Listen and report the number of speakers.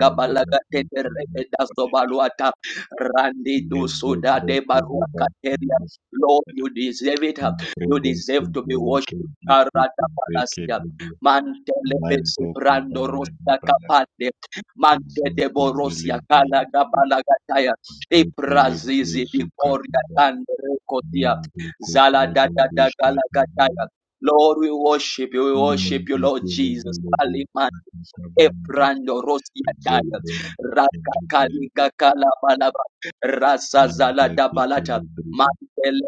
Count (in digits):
2